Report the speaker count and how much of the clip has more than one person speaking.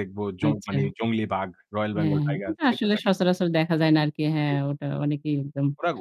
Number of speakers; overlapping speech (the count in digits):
2, about 27%